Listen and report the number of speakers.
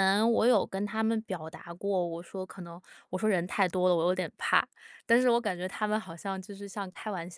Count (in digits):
1